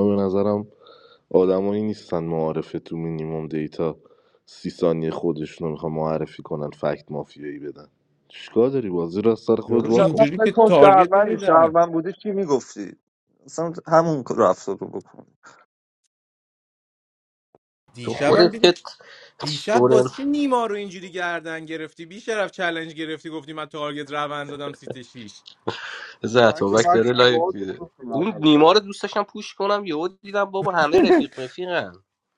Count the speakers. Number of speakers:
4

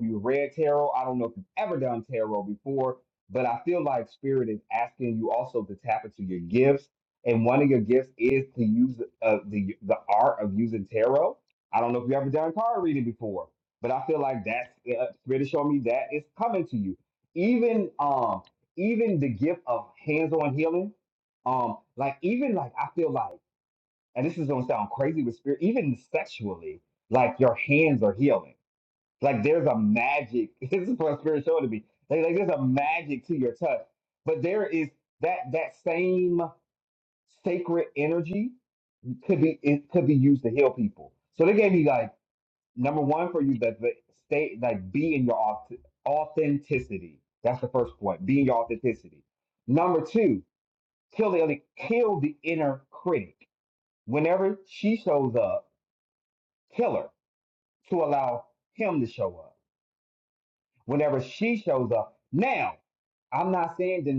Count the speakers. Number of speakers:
1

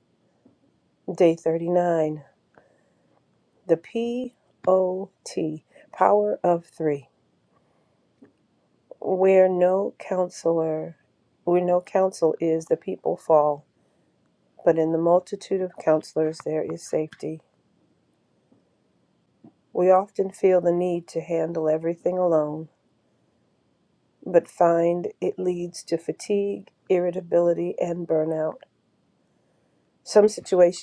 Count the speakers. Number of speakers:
1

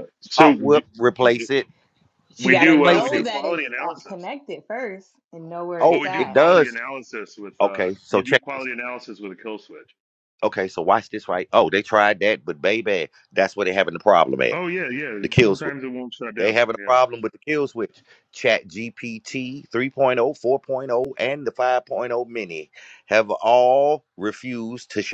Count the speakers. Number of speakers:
3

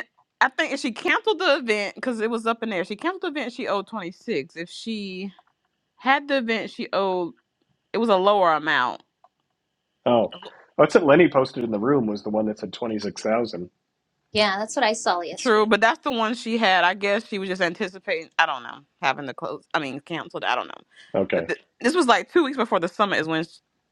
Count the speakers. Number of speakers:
3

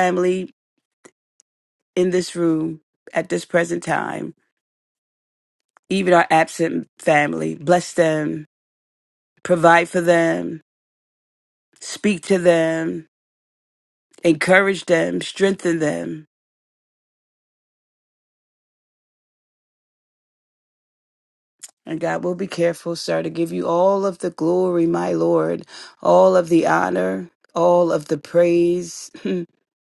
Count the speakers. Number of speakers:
1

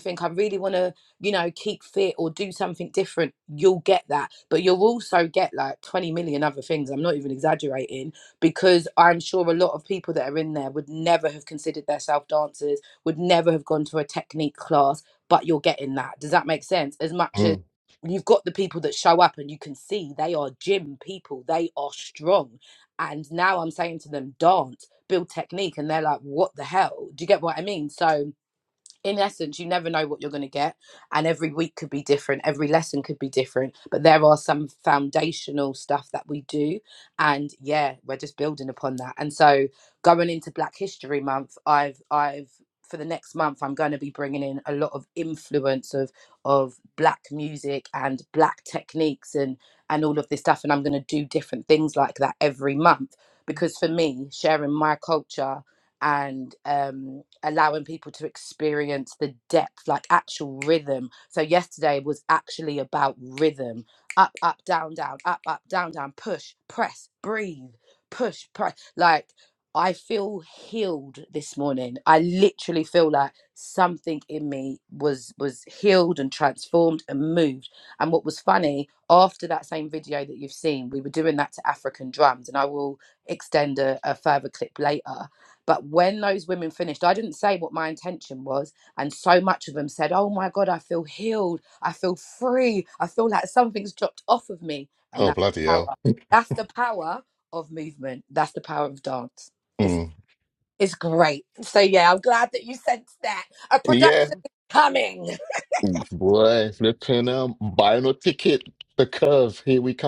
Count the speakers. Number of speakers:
2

